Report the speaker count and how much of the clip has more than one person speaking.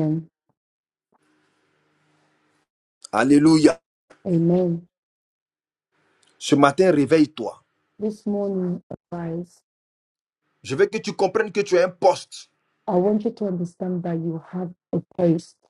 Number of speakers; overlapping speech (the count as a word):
two, no overlap